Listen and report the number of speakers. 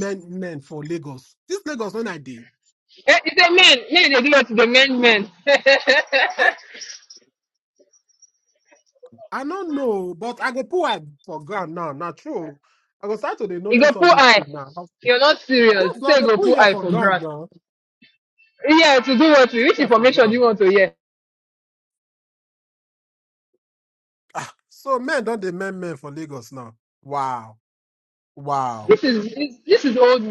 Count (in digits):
2